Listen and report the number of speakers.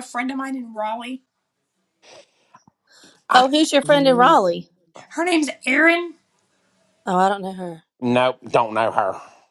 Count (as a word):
three